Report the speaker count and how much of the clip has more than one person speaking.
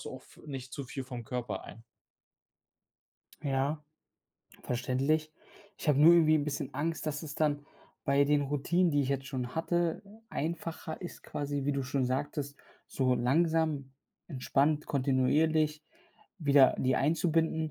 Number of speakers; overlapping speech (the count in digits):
2, no overlap